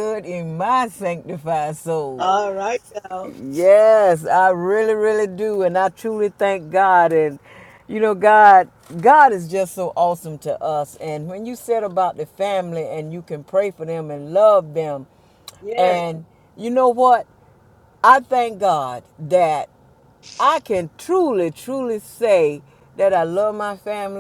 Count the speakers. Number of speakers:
2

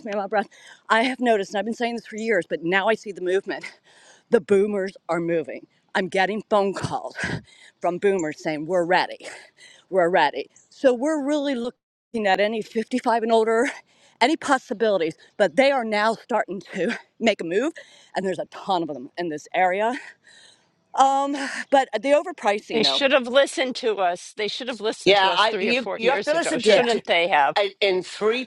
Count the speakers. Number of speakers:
3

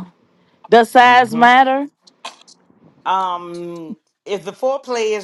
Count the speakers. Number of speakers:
2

